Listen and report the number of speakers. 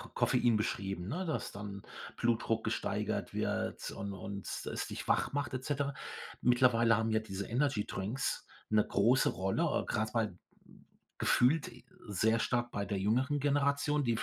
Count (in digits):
1